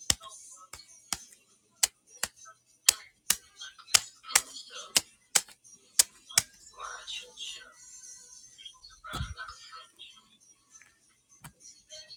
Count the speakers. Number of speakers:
0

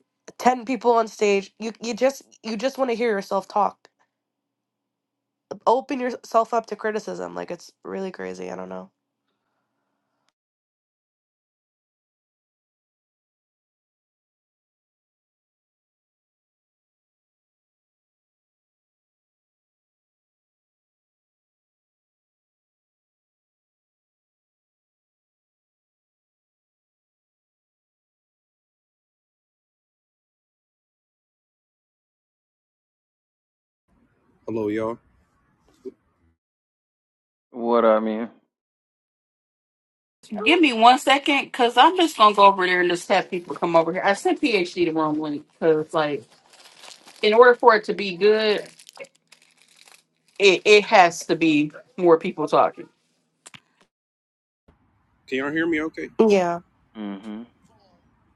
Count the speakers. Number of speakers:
4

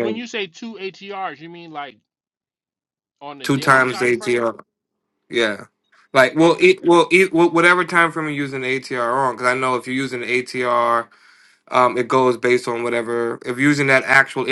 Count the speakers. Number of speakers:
2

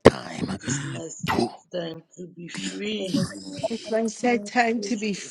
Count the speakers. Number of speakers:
3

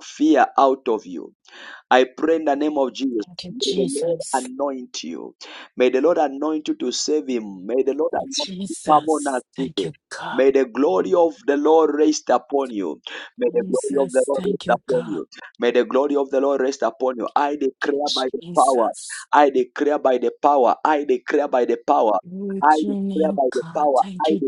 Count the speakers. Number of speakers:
2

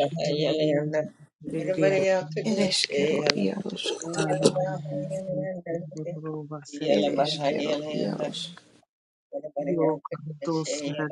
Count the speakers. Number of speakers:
3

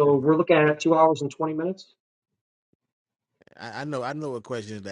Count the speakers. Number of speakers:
2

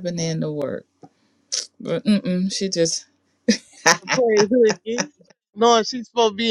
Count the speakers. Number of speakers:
2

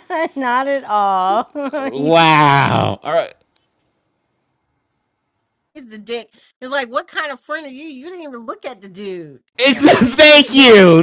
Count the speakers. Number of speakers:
3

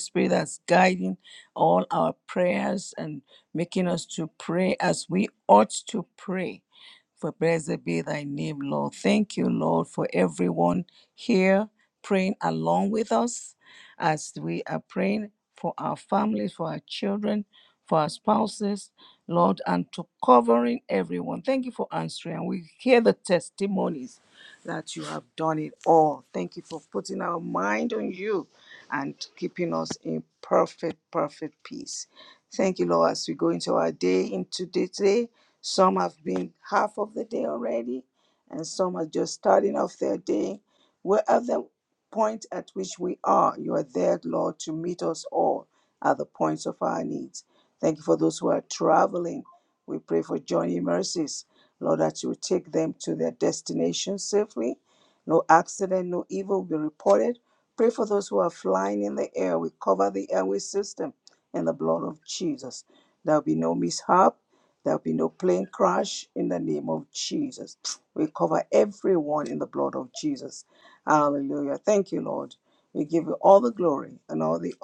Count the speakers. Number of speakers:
1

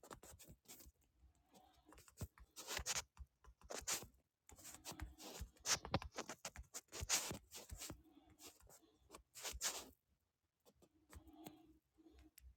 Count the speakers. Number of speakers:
0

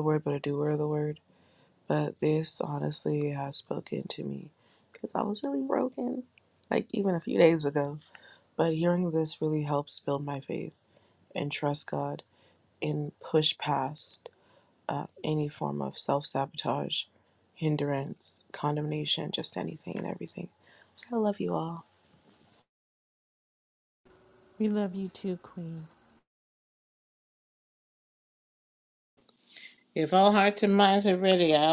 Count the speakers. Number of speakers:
3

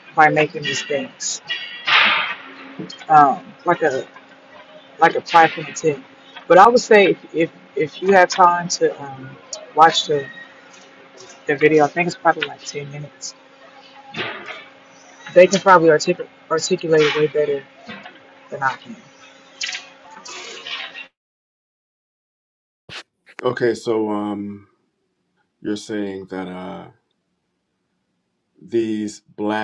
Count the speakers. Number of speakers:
2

